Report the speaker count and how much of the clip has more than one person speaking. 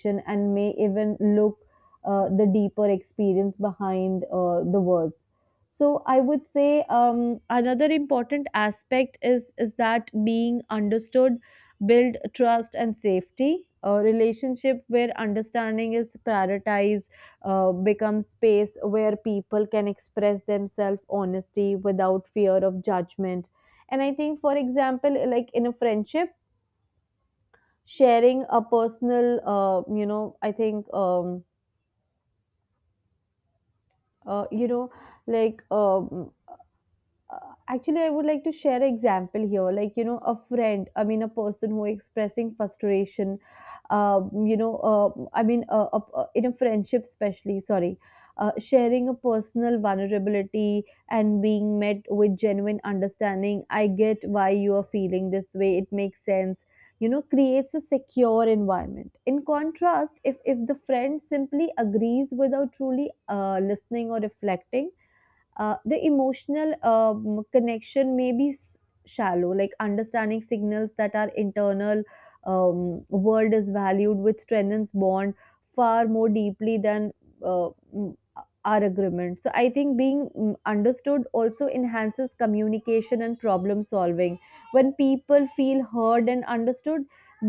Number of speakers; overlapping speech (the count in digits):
1, no overlap